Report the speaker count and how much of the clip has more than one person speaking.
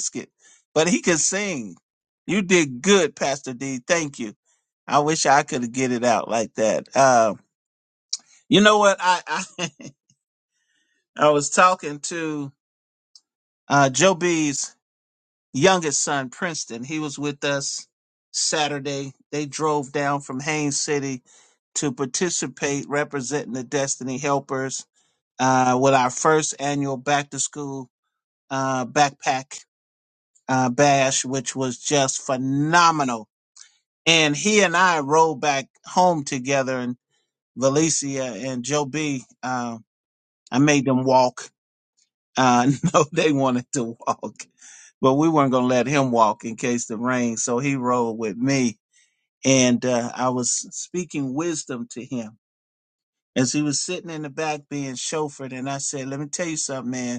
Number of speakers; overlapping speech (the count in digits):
1, no overlap